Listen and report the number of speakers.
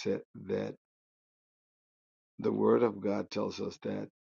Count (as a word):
one